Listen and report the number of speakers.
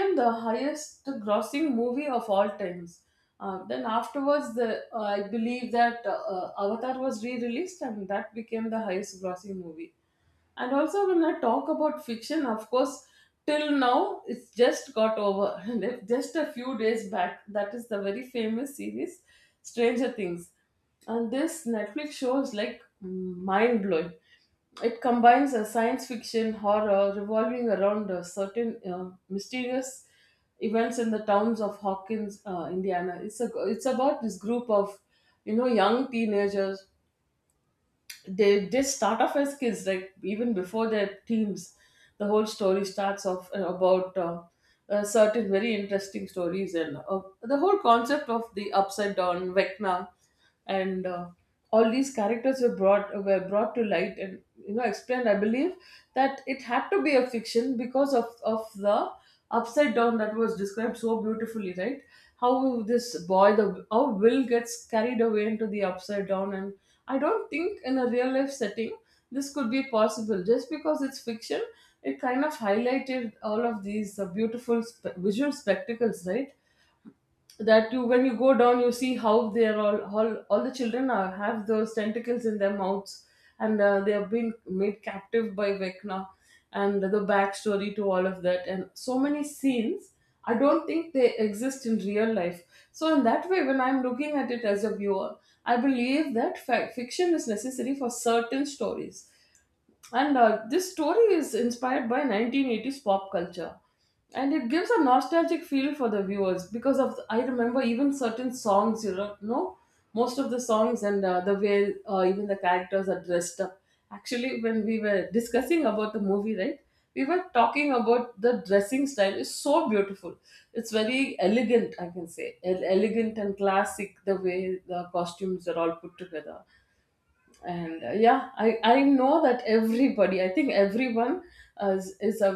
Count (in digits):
1